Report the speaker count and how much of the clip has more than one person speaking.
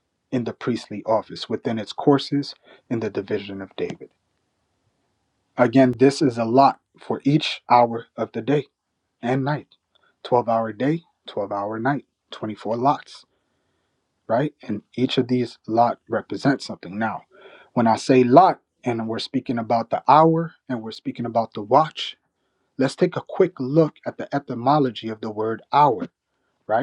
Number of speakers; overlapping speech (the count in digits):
1, no overlap